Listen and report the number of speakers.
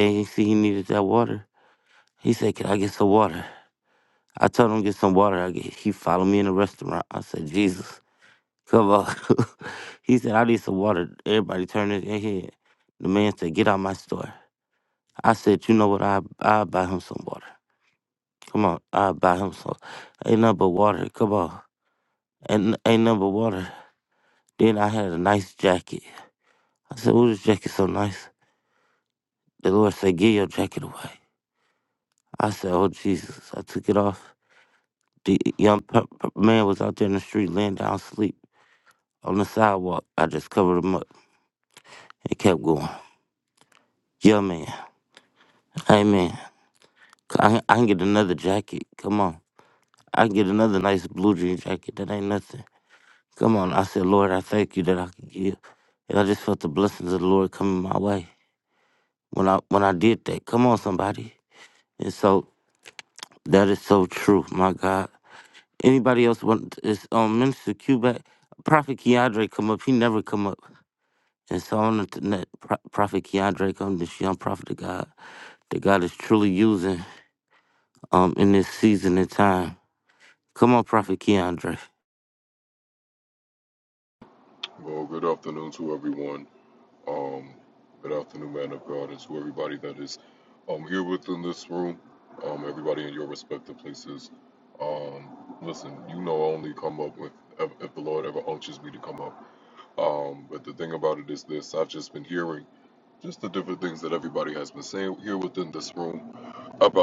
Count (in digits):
2